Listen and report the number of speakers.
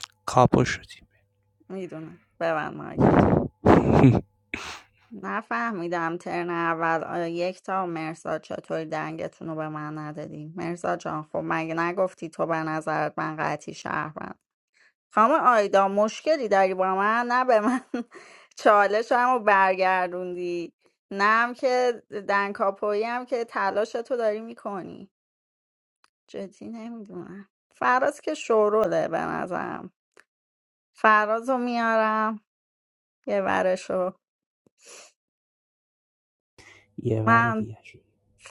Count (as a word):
two